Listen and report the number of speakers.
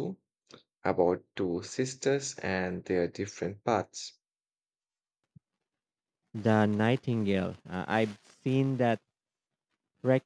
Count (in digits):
2